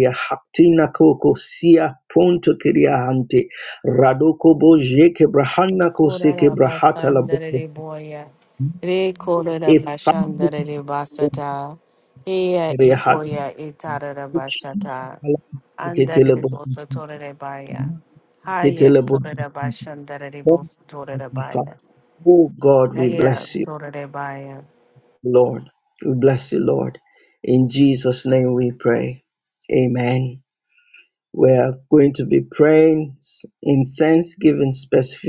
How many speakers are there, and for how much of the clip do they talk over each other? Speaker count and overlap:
two, about 15%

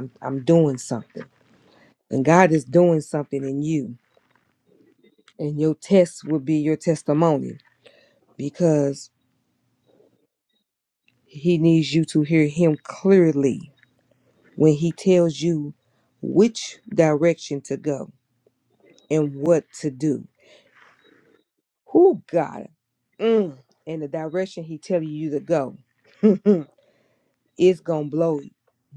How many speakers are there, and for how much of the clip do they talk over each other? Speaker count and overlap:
one, no overlap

